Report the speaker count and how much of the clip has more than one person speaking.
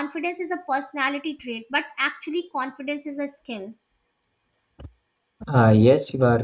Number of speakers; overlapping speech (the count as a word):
two, no overlap